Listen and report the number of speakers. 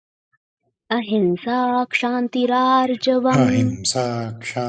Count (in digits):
2